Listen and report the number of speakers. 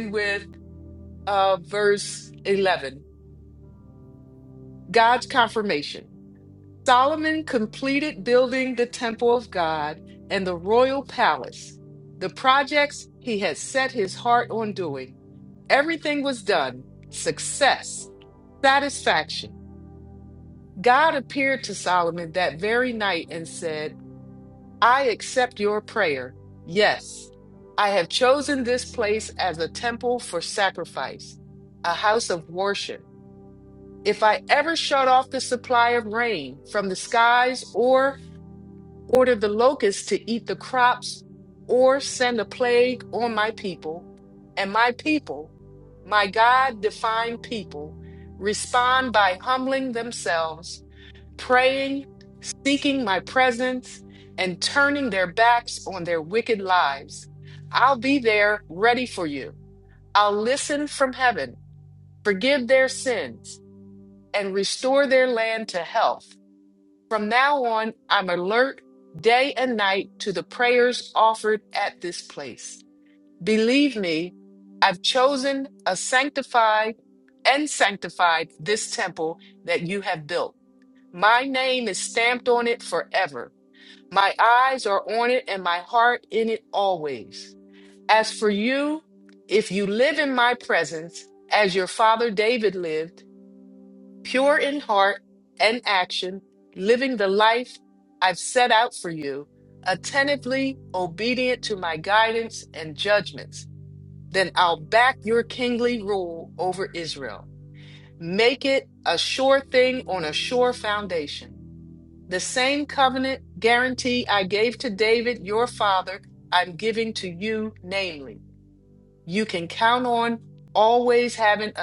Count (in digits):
1